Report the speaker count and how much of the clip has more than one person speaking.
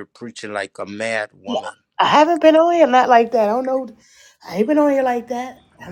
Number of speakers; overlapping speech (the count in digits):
2, about 3%